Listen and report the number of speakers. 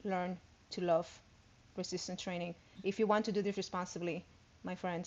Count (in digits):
1